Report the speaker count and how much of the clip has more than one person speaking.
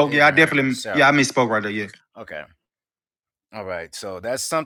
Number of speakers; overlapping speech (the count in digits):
2, about 24%